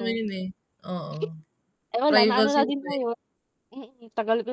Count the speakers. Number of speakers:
two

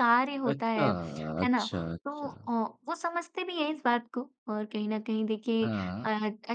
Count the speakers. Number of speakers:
two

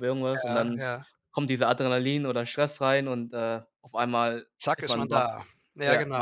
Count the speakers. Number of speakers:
two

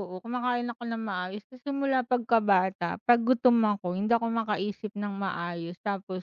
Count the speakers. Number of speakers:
one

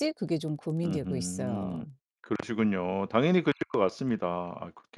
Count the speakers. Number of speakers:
two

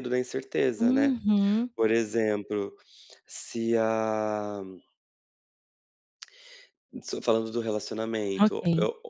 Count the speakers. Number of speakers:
two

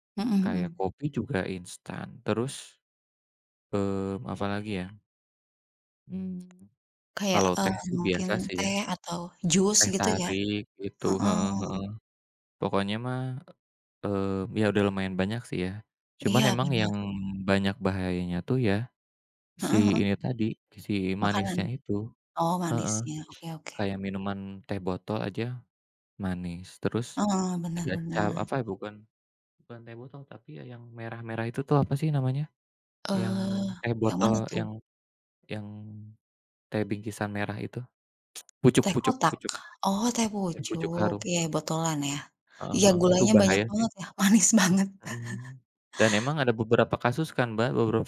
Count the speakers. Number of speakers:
two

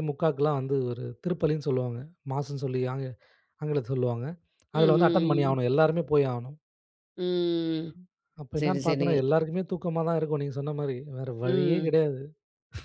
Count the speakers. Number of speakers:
two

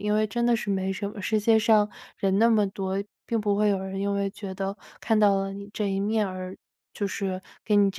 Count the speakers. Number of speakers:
one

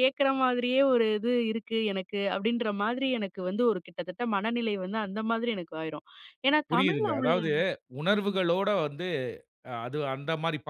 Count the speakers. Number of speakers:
two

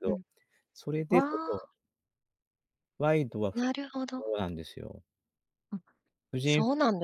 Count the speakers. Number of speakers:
two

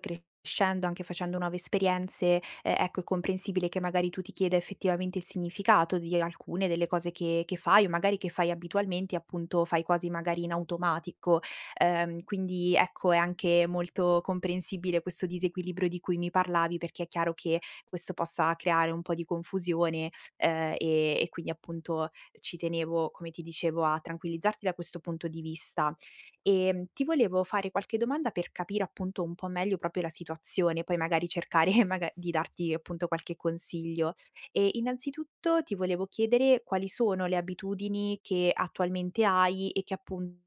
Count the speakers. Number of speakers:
one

